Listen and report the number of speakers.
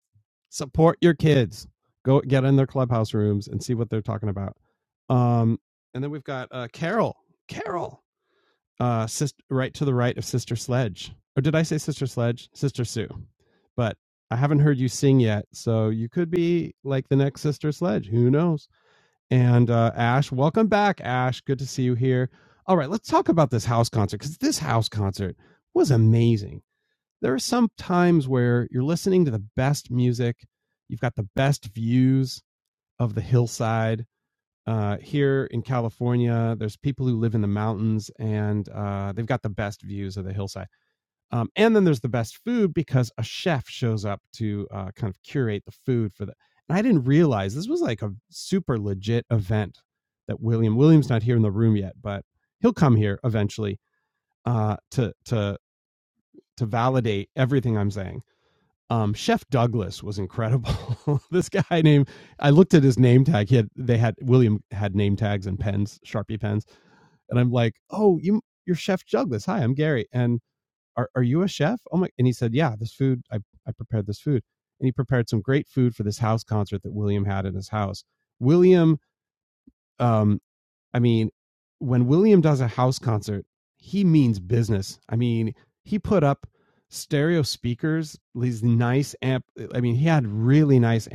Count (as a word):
one